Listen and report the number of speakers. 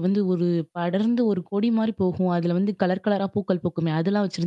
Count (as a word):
one